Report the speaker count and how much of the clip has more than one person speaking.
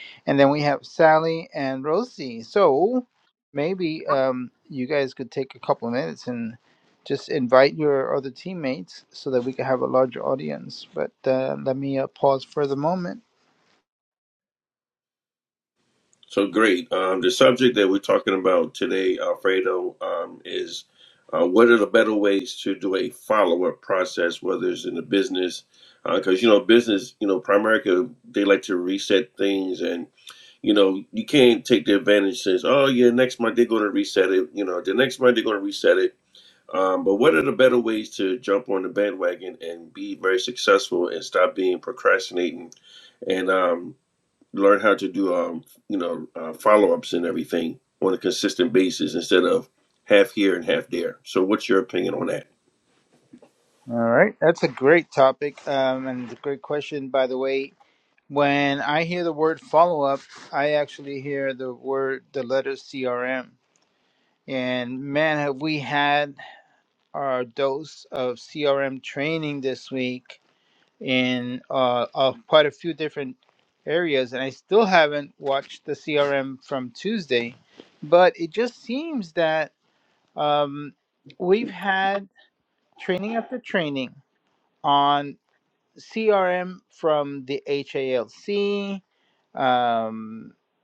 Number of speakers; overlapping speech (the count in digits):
2, no overlap